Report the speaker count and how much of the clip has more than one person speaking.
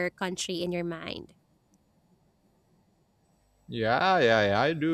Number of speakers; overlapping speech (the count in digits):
2, no overlap